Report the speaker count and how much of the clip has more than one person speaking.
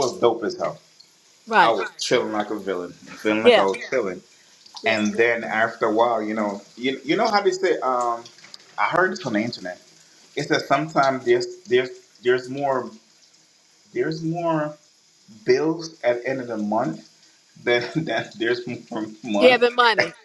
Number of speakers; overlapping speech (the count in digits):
2, about 4%